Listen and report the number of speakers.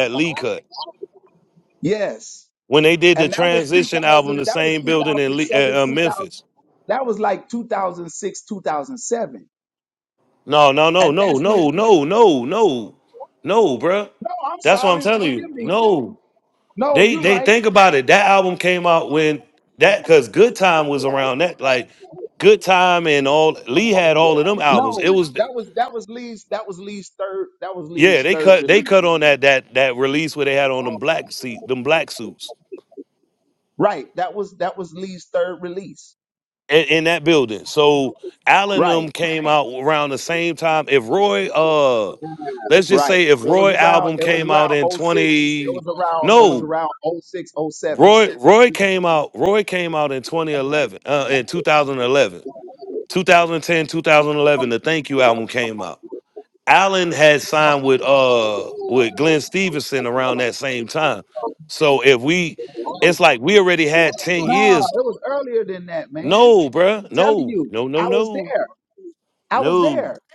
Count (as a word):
two